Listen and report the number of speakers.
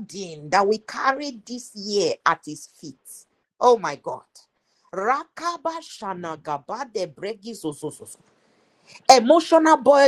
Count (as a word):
one